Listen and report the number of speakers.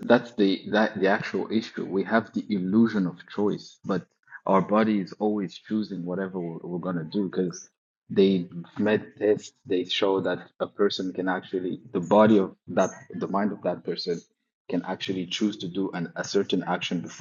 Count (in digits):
1